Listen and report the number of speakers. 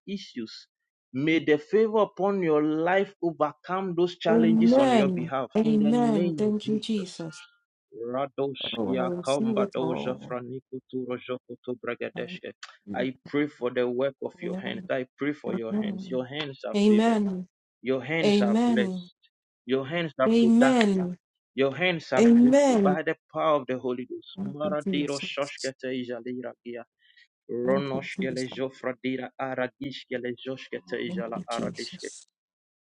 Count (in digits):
2